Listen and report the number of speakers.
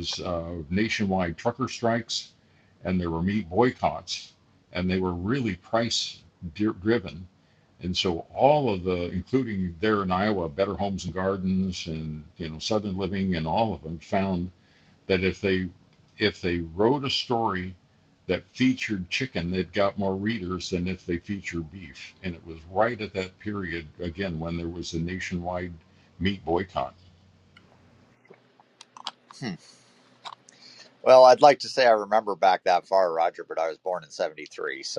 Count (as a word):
two